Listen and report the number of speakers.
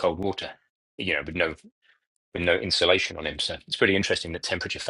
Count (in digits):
1